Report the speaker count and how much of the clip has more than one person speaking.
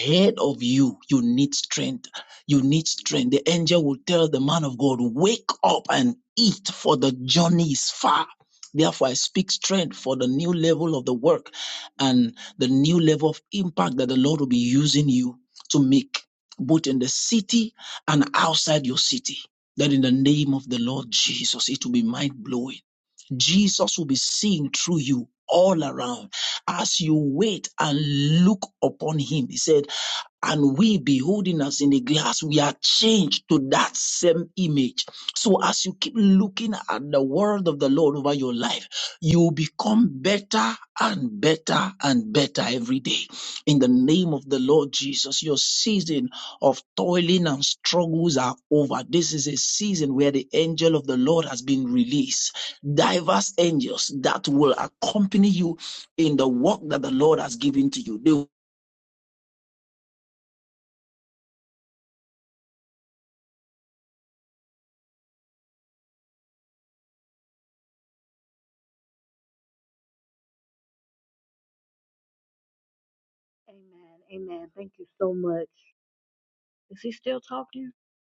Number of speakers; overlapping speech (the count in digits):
2, no overlap